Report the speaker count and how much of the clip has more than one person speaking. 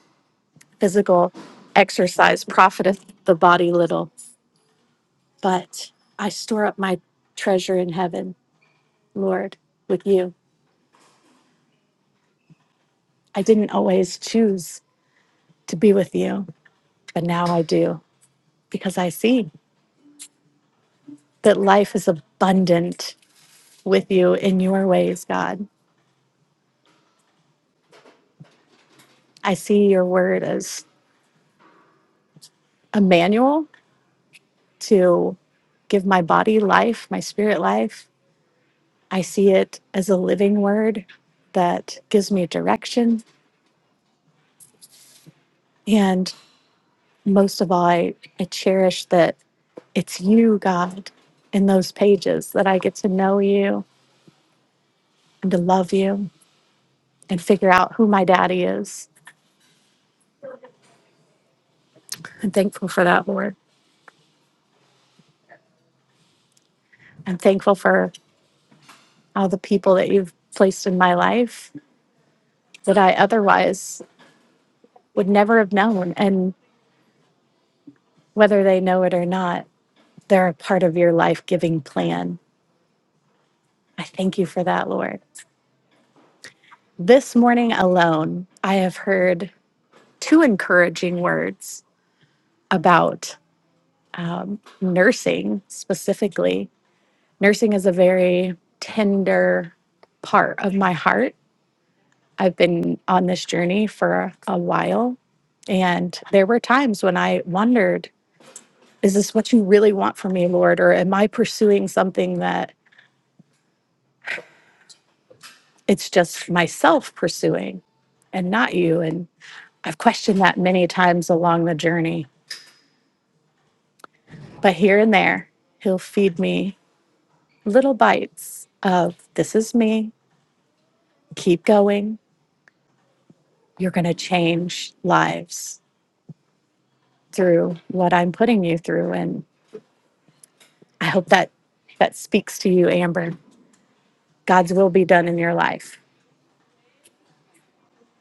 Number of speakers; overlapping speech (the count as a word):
one, no overlap